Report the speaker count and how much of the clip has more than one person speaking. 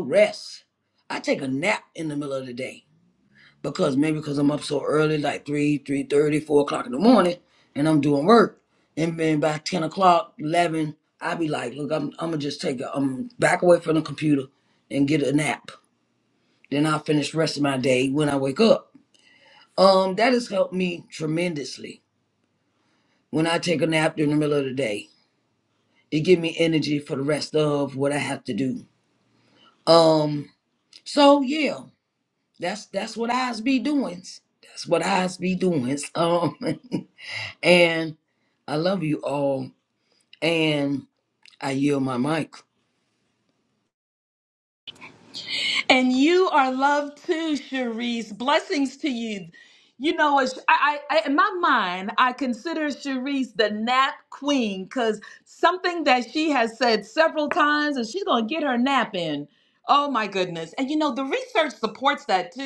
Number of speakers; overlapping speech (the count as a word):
two, no overlap